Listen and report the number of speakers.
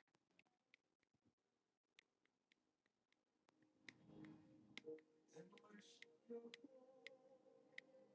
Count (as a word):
zero